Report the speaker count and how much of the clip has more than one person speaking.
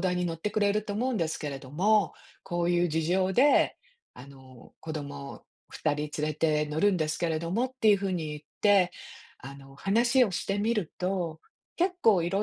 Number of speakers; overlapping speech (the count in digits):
1, no overlap